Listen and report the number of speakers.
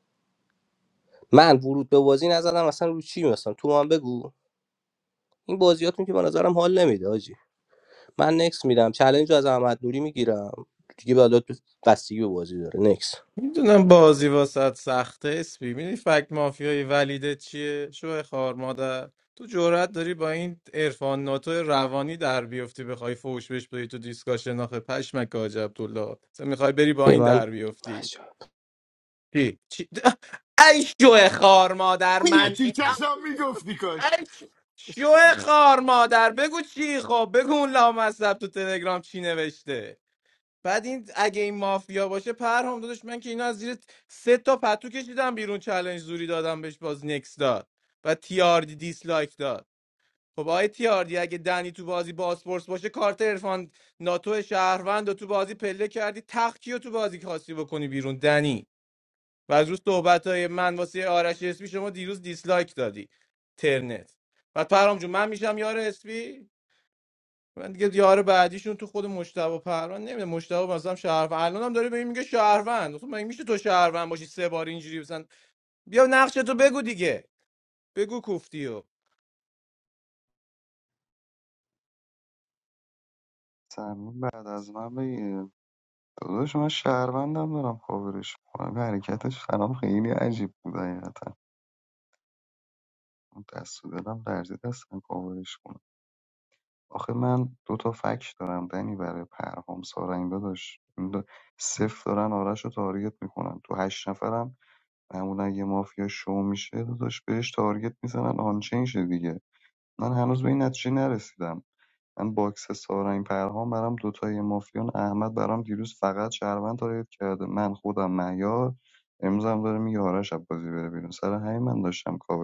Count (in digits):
4